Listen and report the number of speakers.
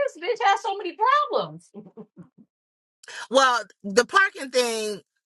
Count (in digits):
2